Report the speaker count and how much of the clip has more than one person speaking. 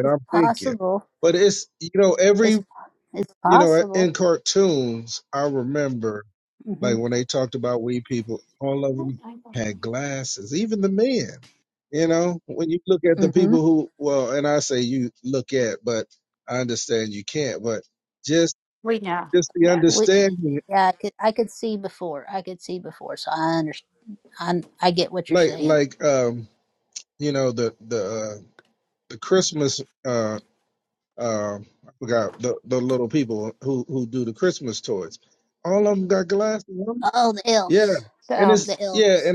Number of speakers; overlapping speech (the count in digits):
3, about 10%